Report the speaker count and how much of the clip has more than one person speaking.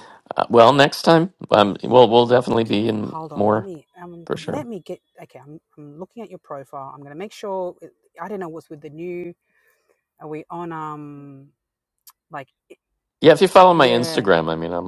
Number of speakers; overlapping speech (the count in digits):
2, about 13%